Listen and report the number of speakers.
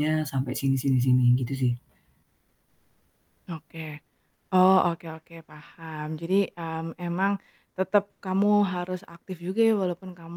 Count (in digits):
2